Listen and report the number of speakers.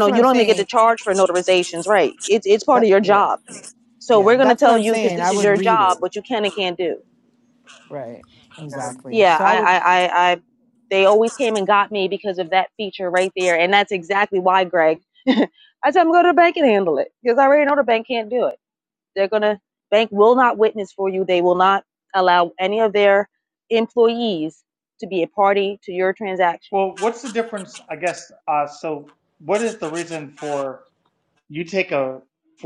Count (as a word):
three